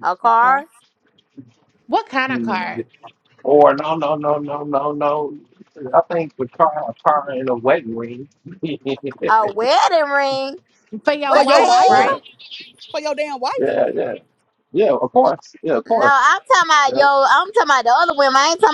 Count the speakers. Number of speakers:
4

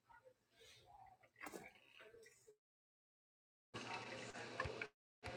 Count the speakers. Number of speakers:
0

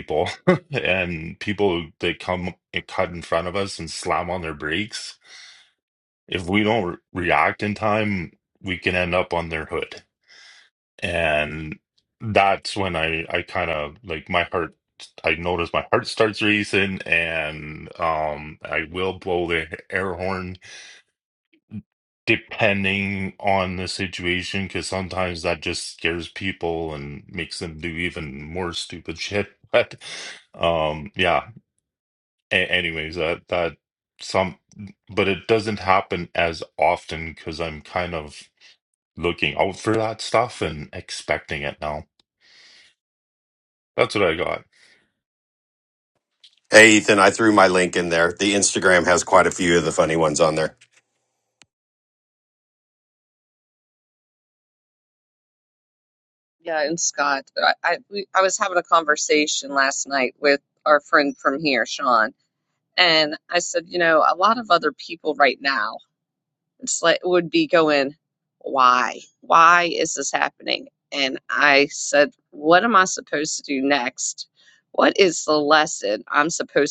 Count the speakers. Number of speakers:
3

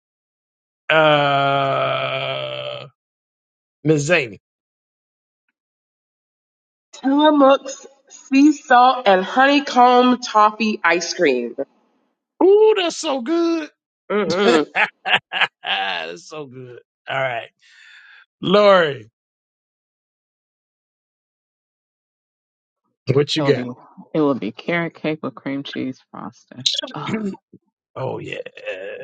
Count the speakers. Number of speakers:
3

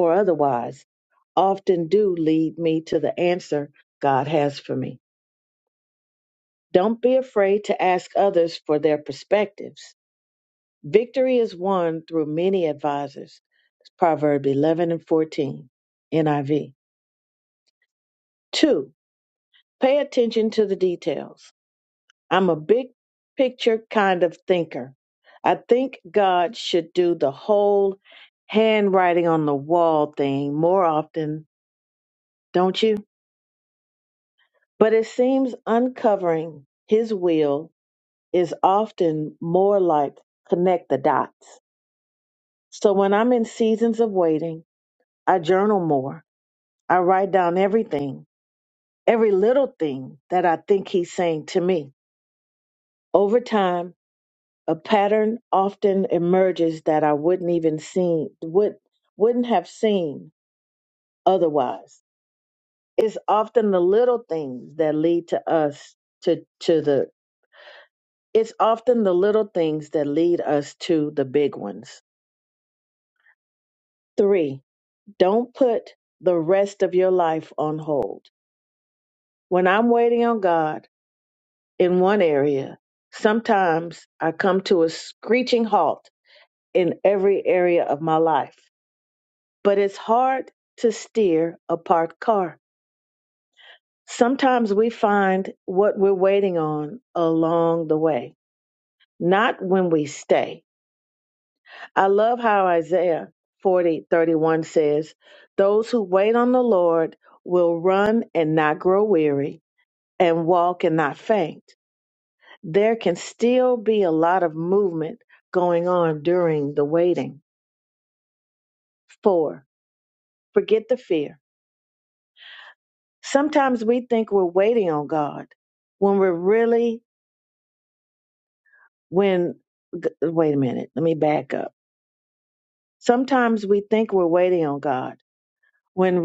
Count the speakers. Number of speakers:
1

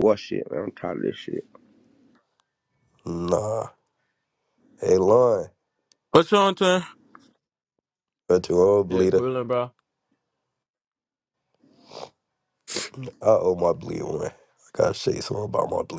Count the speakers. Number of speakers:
3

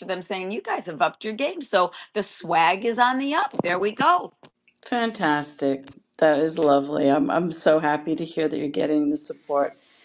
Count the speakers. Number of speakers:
2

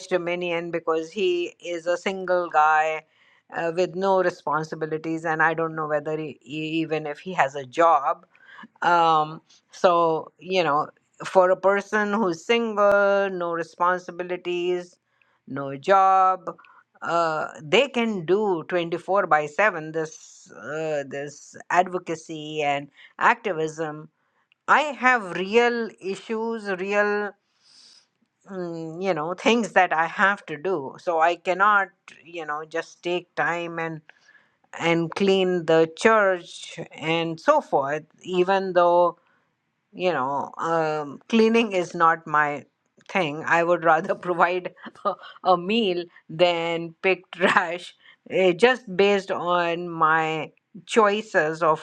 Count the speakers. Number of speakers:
1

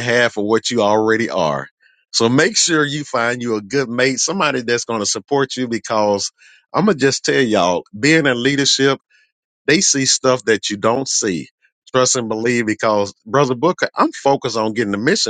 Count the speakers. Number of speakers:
1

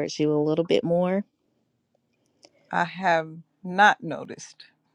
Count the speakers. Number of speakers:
2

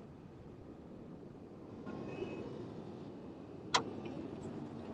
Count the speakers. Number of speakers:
0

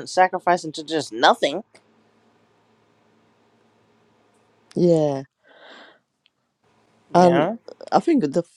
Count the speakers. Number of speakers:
2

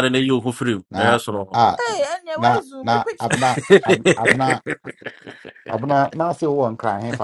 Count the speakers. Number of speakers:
3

